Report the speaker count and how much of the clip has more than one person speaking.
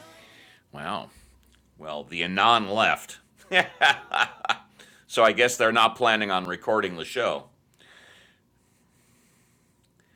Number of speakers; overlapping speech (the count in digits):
1, no overlap